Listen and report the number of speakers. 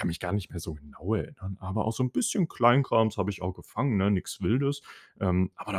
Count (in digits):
1